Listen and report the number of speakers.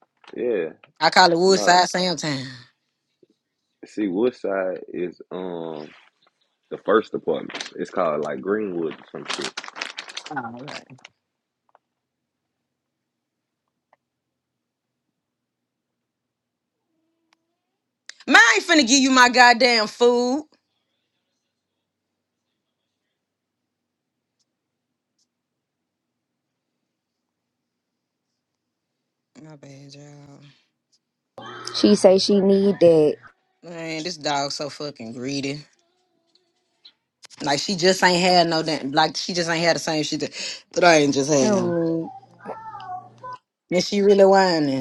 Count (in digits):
3